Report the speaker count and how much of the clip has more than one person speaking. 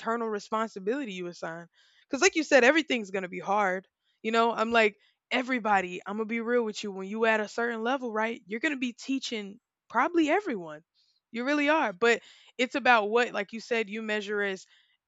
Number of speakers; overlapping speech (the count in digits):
1, no overlap